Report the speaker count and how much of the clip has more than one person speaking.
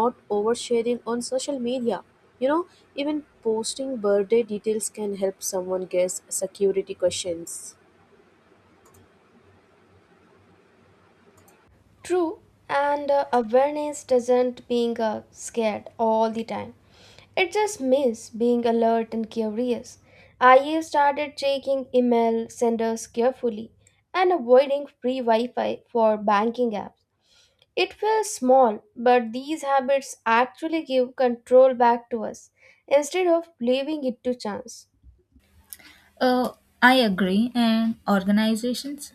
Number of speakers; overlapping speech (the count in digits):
3, no overlap